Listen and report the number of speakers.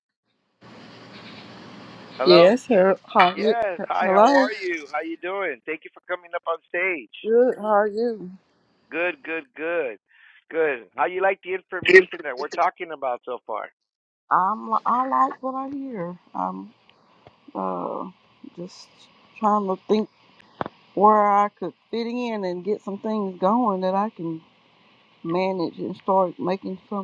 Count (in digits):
2